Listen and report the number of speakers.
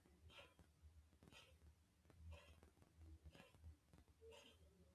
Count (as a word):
zero